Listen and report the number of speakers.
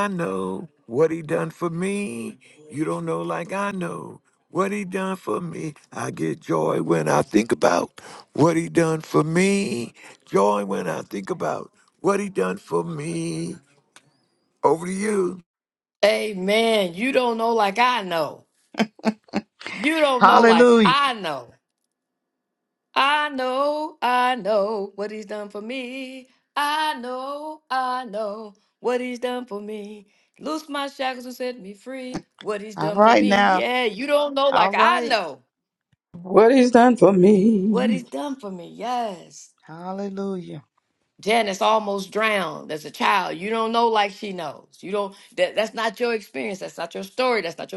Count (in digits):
4